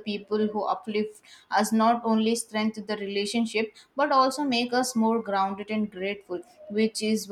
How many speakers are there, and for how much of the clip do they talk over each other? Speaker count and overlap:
1, no overlap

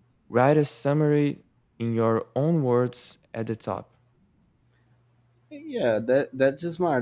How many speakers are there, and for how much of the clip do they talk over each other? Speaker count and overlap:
2, no overlap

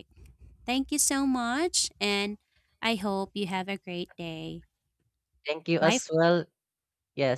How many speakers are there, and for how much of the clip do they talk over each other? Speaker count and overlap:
2, about 3%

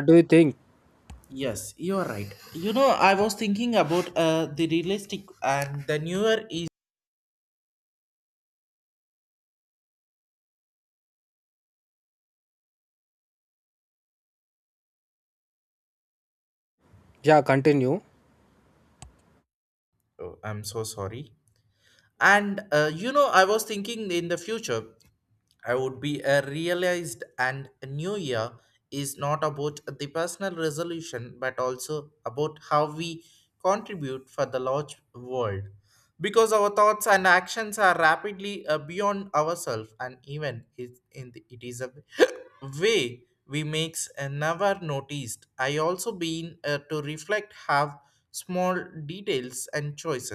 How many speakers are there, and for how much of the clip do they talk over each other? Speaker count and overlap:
2, no overlap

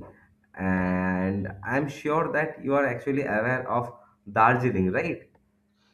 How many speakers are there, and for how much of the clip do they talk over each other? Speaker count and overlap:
1, no overlap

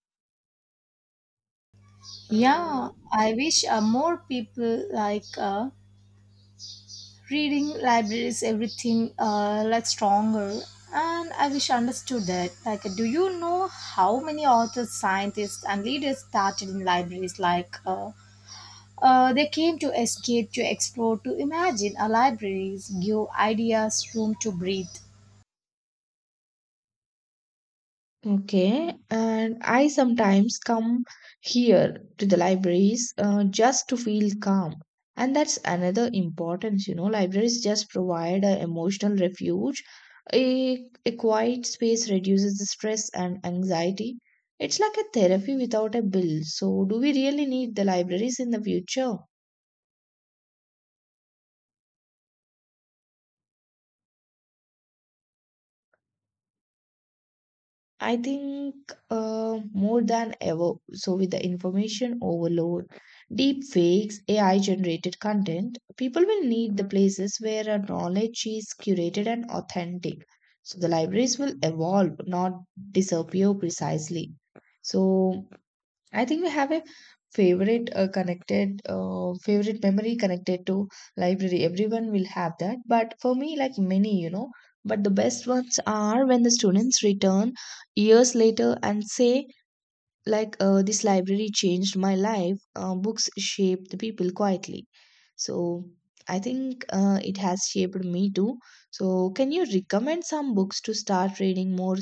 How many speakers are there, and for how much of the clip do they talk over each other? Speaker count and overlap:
2, no overlap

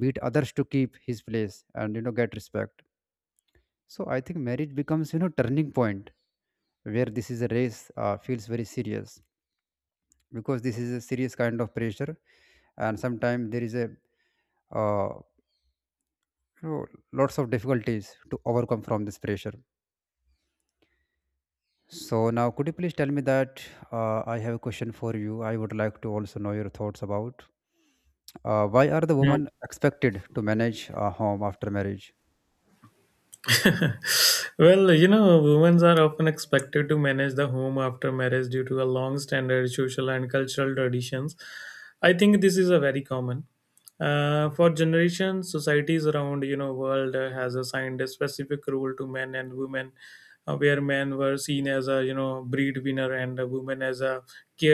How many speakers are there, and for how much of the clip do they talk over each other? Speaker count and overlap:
2, under 1%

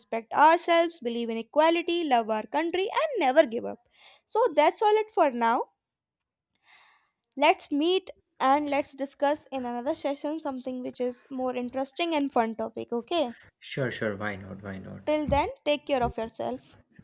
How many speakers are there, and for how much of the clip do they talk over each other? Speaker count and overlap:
2, under 1%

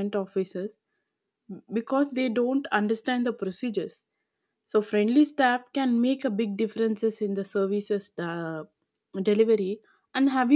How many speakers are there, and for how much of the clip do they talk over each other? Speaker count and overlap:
1, no overlap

